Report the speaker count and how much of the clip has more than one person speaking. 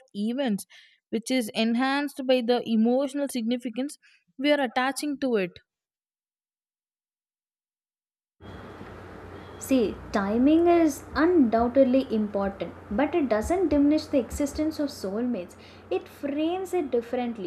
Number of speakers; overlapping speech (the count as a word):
two, no overlap